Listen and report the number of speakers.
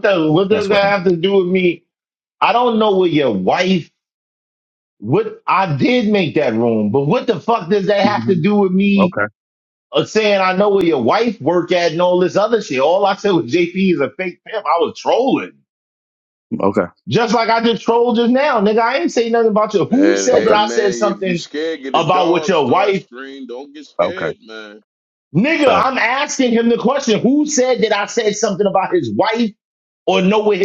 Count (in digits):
3